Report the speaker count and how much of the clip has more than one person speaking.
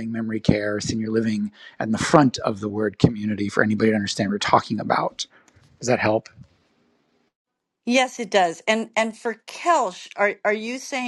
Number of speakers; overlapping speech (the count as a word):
two, no overlap